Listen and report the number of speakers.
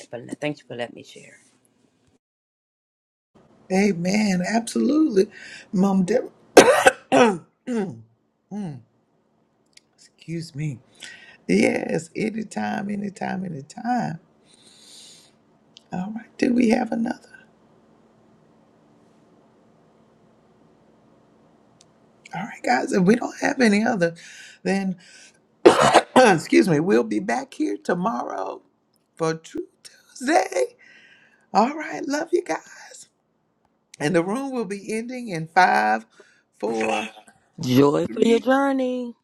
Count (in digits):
3